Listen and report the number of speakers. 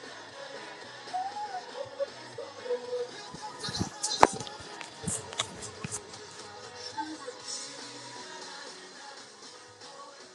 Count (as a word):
zero